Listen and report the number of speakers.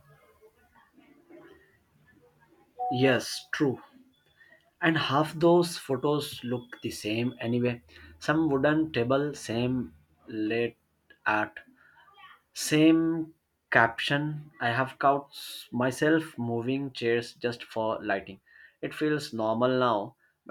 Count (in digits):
1